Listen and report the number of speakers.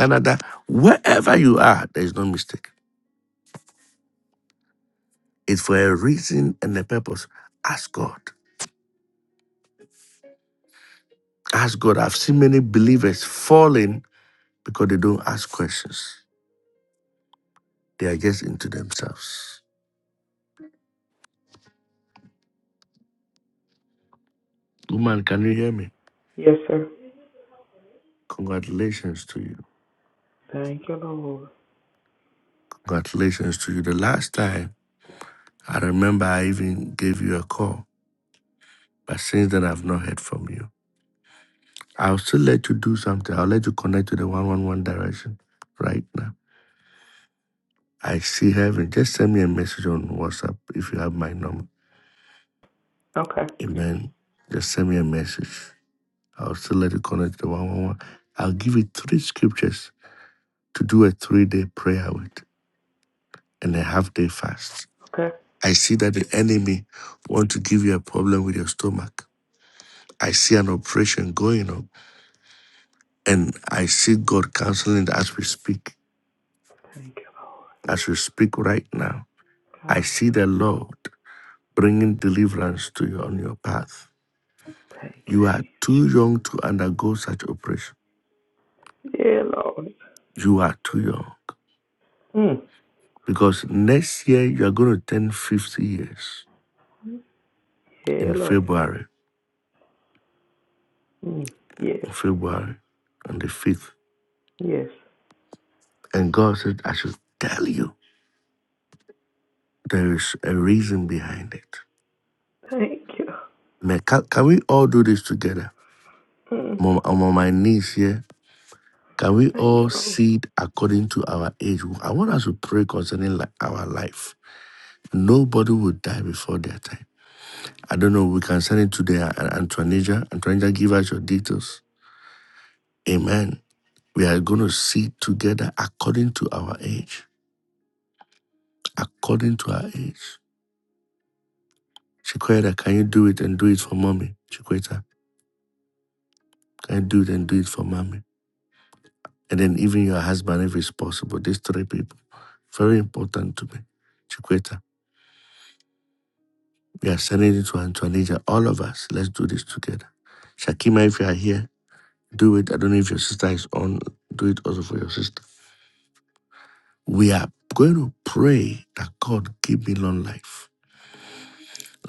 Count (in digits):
2